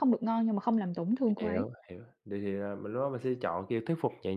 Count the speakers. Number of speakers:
2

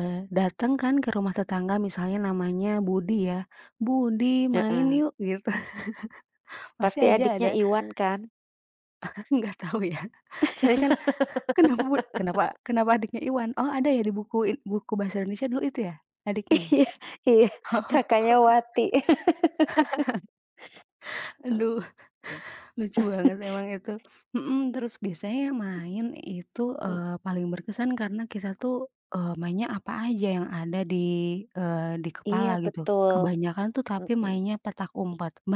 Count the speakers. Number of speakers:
2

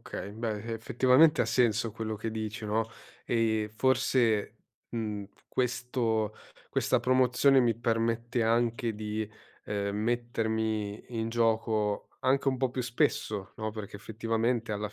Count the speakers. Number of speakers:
1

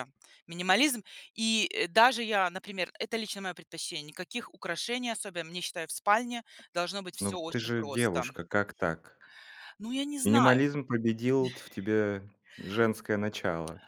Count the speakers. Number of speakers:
2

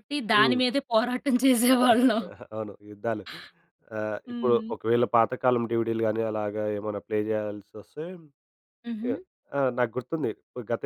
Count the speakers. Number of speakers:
2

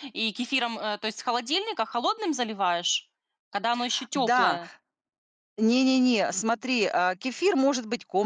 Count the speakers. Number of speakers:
2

